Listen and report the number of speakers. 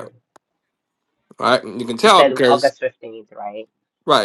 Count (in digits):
2